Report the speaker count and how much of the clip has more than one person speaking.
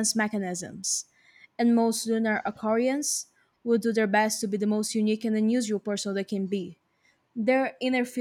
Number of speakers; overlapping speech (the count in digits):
1, no overlap